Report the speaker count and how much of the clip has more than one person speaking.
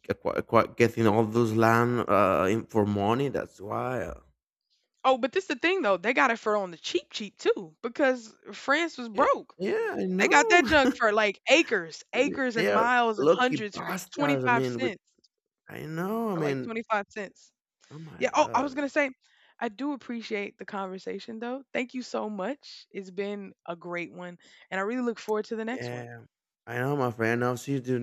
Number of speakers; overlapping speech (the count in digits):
2, about 17%